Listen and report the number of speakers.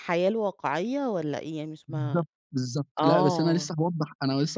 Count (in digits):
2